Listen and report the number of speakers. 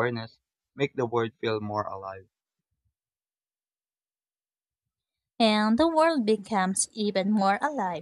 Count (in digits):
2